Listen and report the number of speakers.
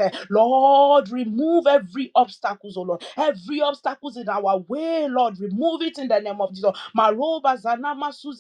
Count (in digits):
1